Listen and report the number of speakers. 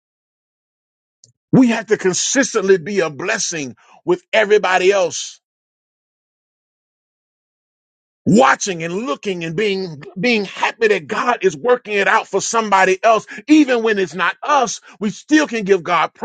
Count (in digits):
1